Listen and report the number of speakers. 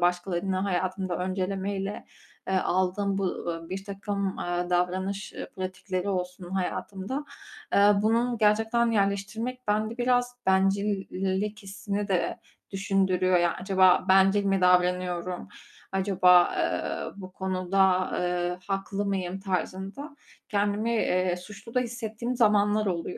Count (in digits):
1